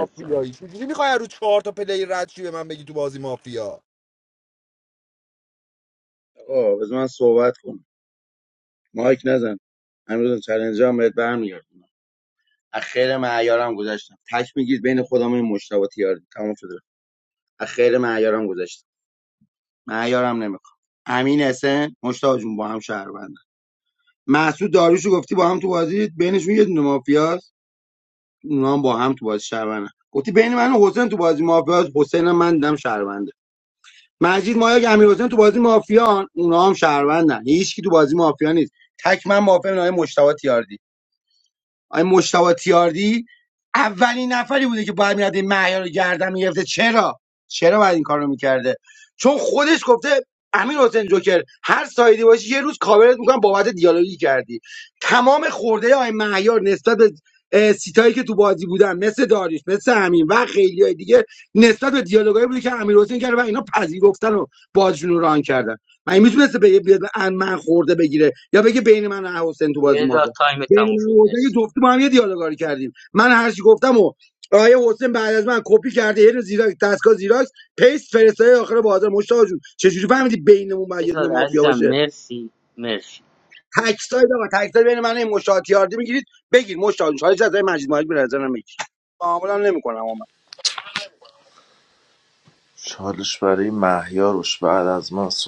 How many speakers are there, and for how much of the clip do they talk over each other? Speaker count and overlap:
4, about 2%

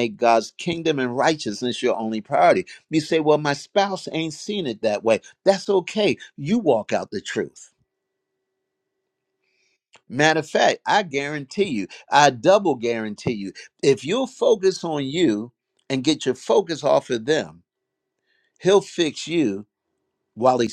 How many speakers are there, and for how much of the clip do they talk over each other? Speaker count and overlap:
1, no overlap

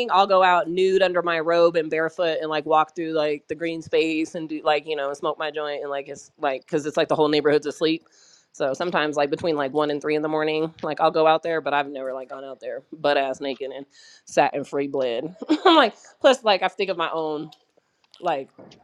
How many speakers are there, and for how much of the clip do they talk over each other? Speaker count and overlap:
1, no overlap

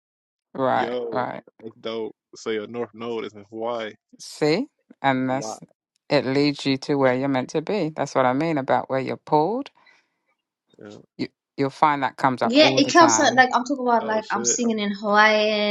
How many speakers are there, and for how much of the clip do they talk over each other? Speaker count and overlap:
3, about 17%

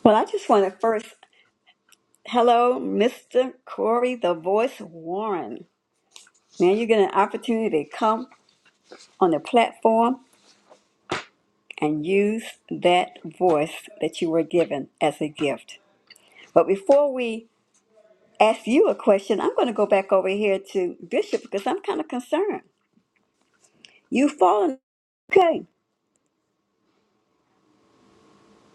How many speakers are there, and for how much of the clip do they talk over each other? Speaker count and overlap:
1, no overlap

